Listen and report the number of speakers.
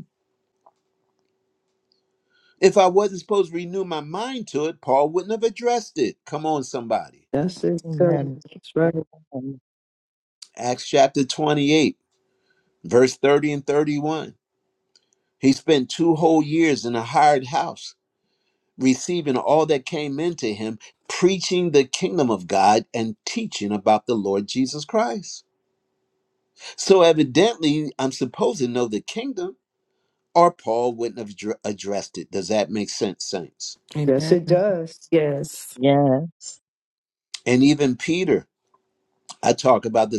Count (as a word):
four